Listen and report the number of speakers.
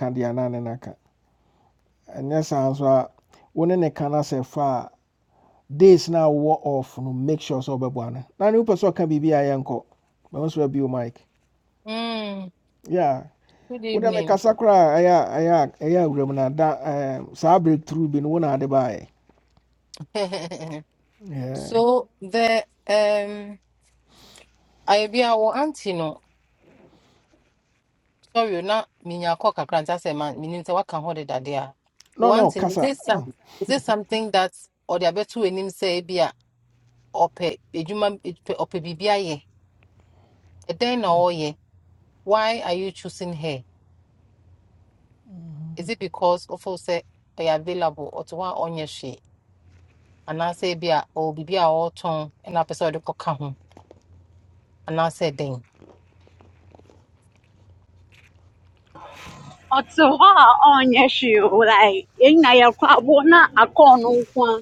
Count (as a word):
three